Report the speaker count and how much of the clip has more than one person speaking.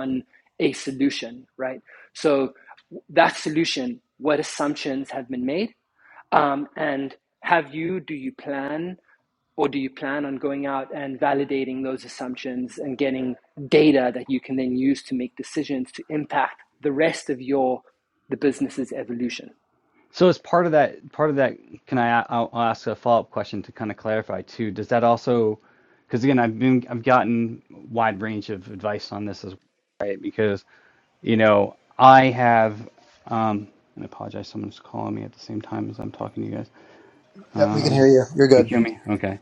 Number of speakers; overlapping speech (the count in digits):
3, about 2%